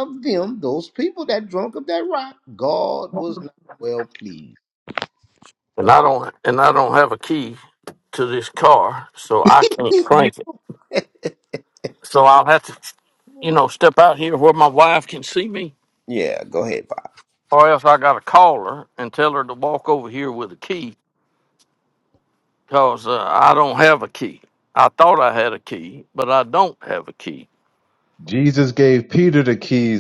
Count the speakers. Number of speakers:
3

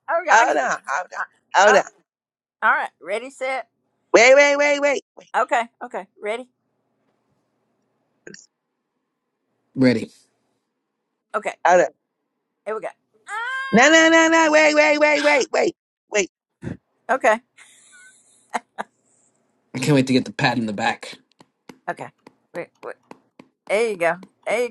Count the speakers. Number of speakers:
3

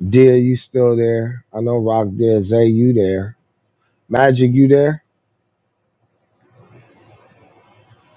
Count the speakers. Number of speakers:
1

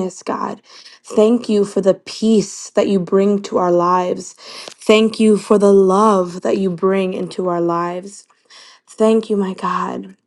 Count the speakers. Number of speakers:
1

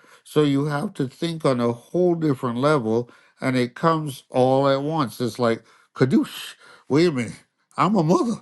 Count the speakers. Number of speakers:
1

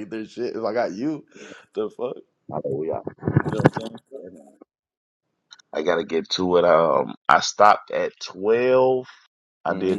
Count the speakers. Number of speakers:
2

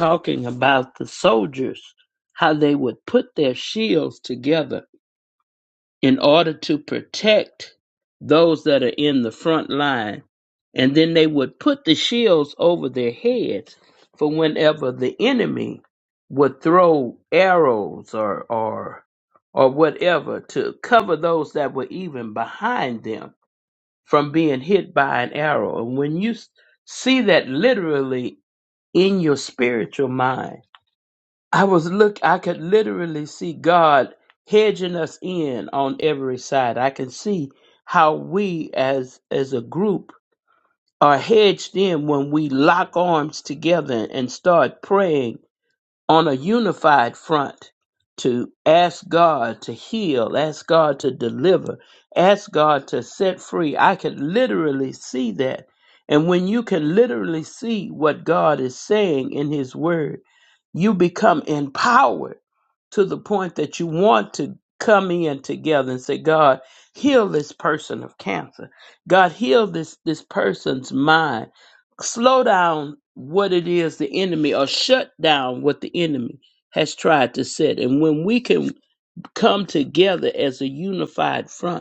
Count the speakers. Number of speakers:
1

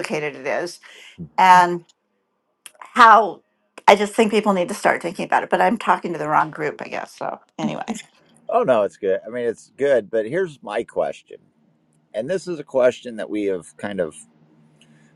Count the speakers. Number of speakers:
2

